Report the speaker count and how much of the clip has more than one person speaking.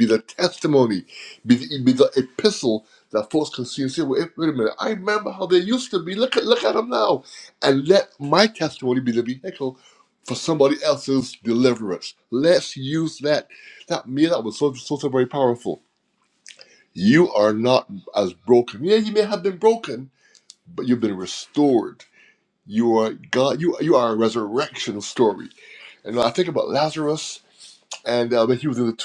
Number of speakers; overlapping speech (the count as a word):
one, no overlap